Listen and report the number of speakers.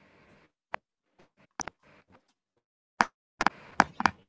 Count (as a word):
zero